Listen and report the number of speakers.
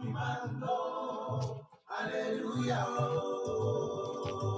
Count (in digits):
0